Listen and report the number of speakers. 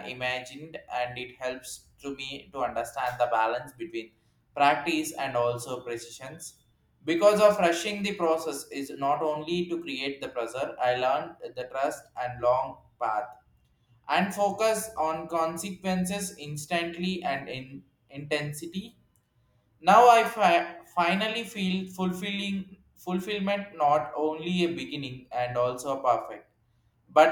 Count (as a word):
one